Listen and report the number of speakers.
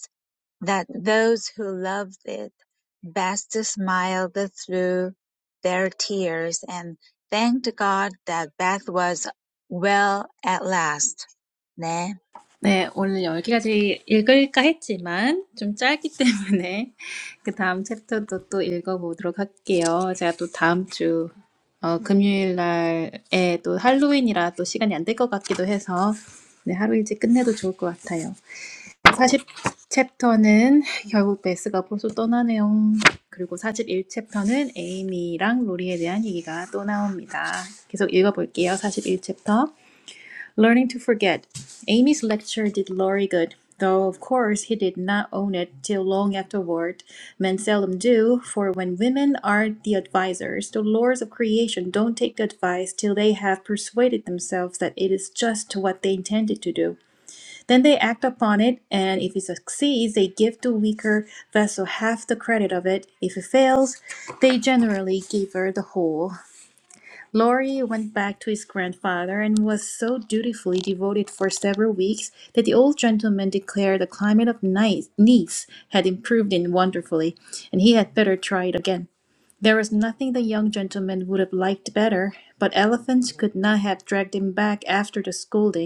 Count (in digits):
2